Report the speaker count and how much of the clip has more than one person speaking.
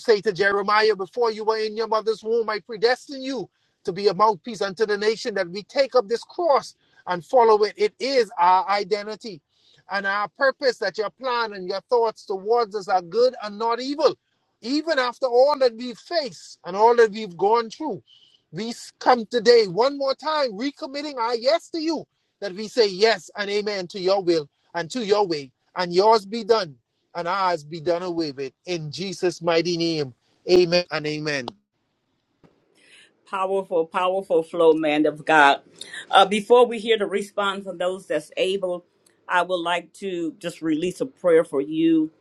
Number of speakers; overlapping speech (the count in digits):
2, no overlap